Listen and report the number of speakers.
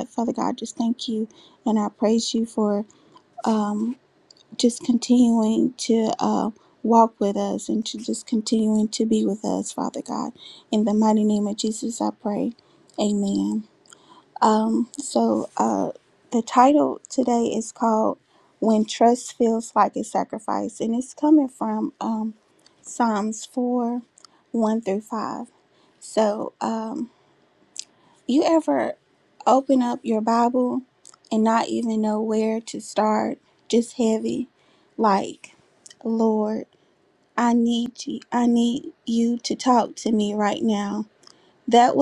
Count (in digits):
1